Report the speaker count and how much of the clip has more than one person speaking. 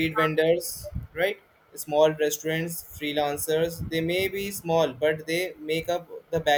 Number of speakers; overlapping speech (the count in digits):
1, no overlap